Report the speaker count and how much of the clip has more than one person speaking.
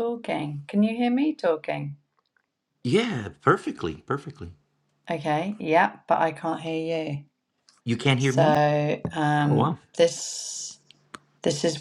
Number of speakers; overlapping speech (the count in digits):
2, about 5%